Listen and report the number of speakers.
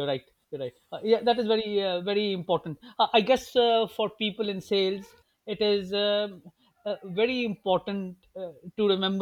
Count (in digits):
1